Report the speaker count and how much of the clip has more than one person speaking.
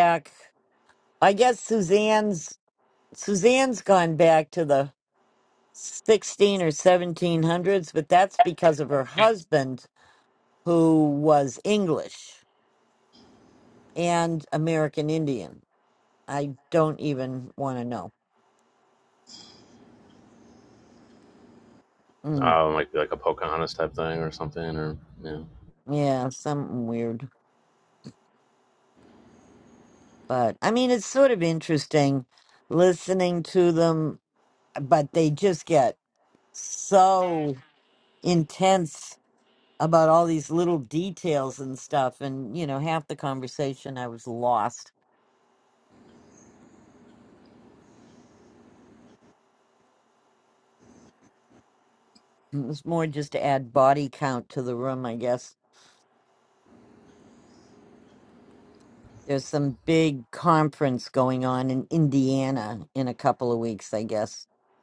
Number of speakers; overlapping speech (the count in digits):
2, under 1%